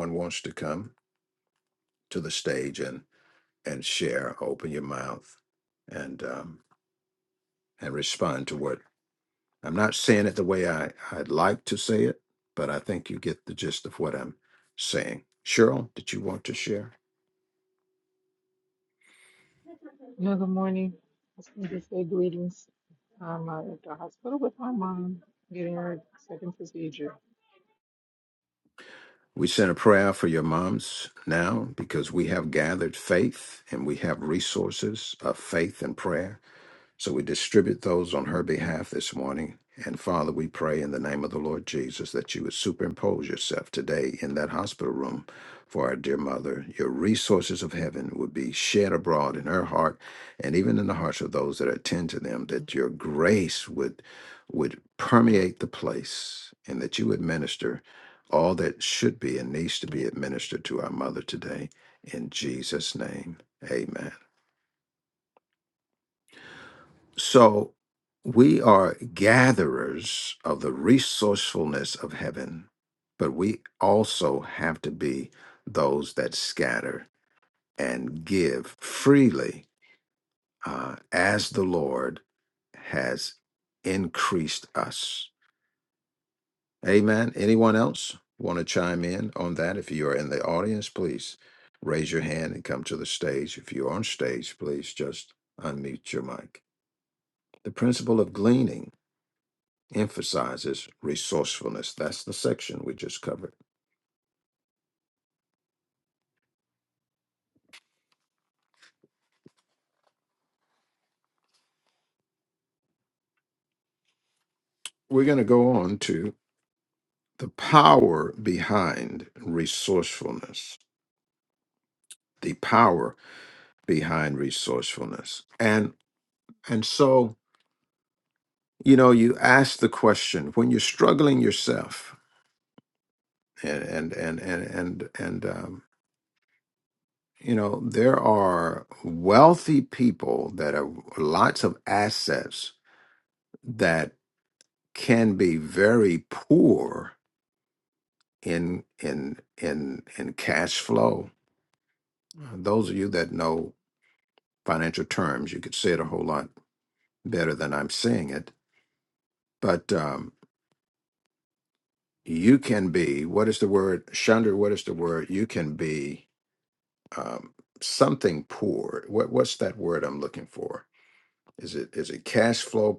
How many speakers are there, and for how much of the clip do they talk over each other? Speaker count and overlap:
two, no overlap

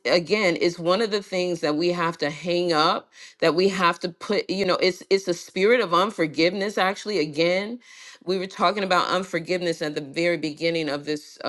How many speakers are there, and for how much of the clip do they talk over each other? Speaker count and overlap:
one, no overlap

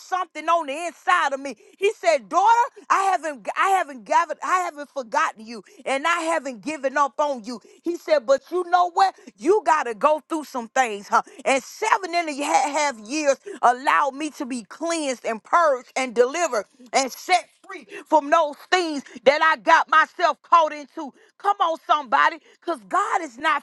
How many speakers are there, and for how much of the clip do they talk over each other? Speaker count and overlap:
one, no overlap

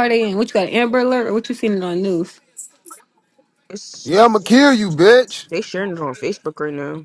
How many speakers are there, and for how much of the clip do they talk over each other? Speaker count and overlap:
three, no overlap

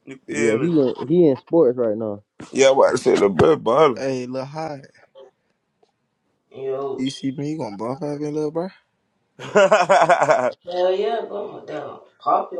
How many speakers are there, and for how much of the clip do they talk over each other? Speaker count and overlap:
four, about 4%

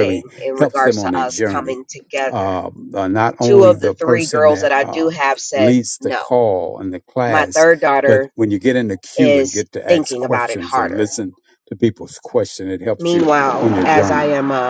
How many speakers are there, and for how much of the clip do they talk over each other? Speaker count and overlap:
two, about 47%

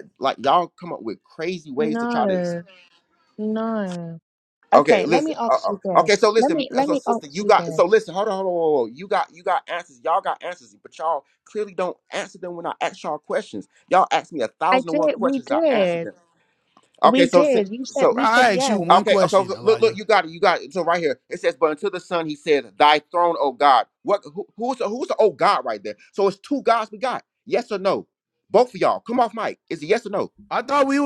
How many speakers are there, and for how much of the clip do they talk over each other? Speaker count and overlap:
three, about 24%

